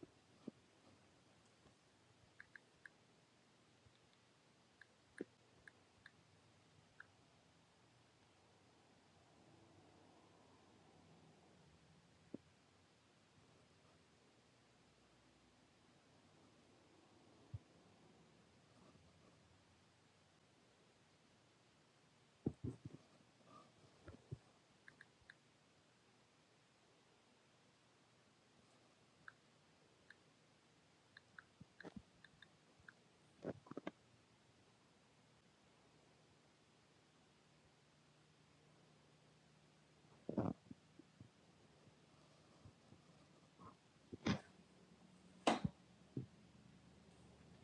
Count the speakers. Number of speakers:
0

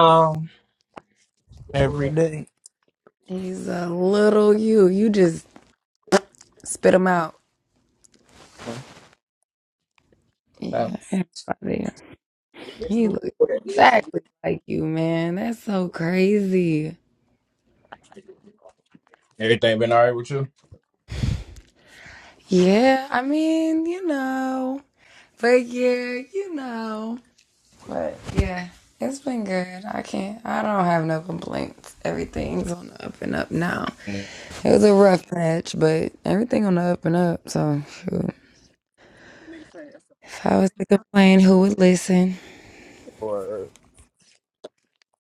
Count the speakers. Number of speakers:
2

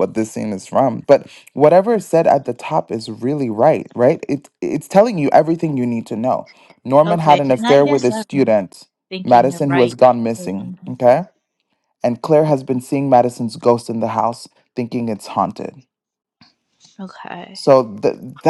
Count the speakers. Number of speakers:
2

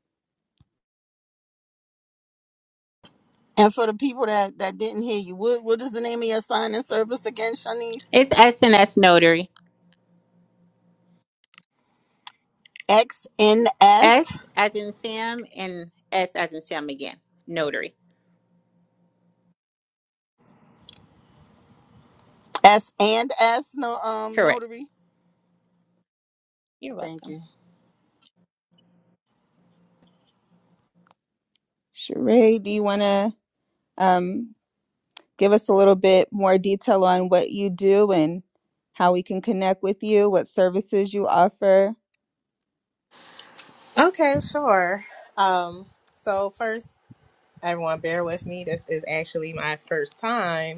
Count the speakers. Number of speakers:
4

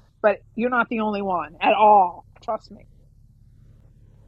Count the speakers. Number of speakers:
1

